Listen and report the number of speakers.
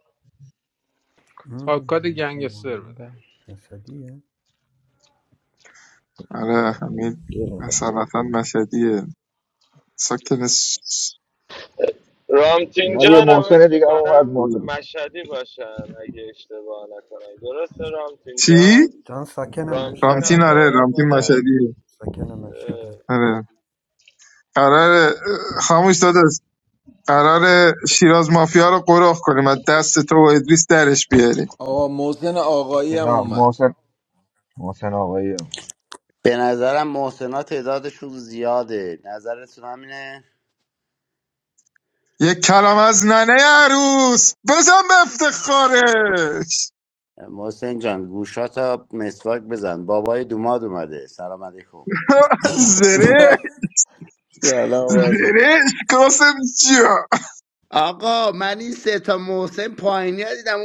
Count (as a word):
seven